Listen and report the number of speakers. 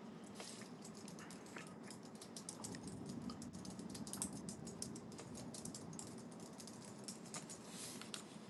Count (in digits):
0